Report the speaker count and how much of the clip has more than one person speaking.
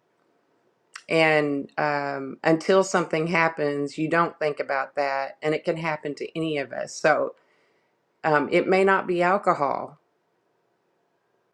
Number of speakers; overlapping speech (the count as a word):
one, no overlap